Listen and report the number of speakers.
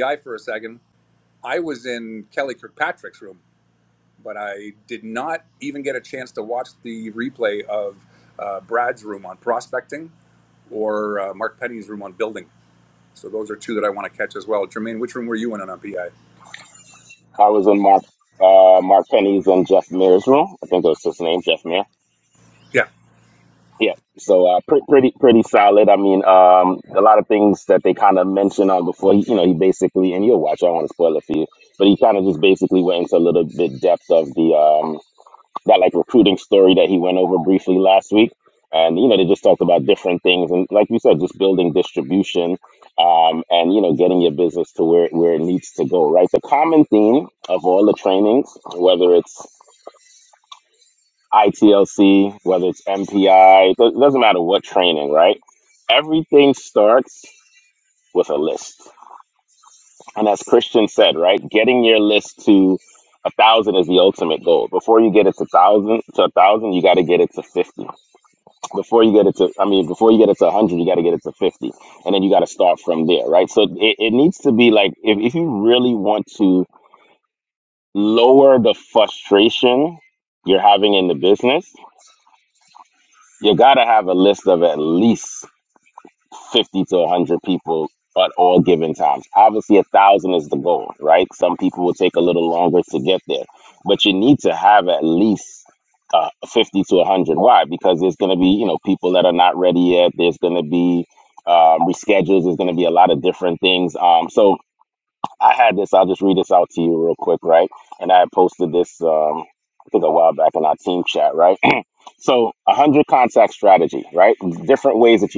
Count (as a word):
two